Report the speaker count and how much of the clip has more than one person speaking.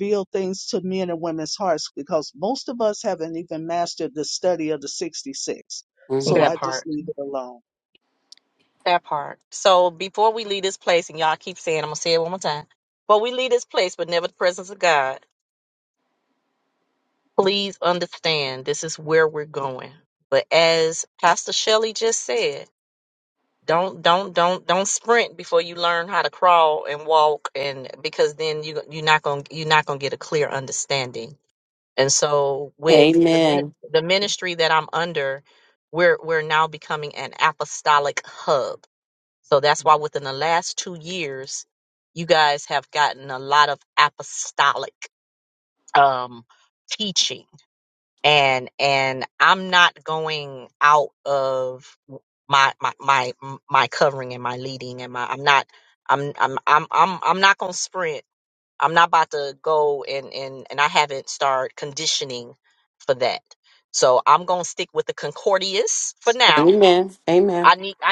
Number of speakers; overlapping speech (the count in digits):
3, about 2%